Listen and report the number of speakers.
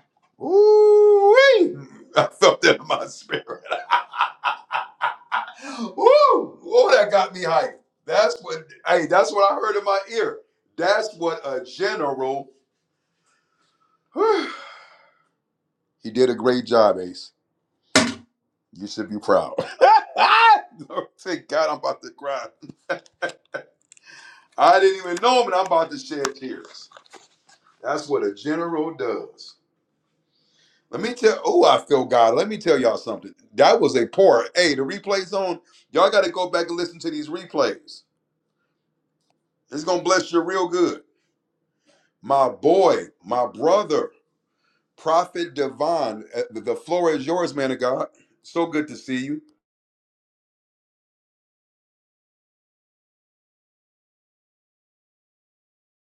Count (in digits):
1